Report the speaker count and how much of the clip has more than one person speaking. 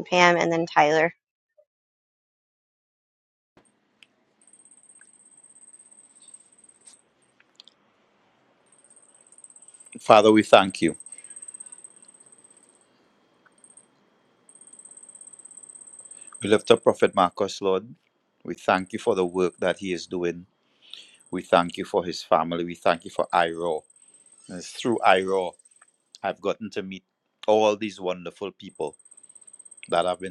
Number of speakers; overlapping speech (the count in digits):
2, no overlap